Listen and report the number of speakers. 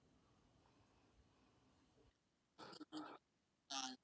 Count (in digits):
0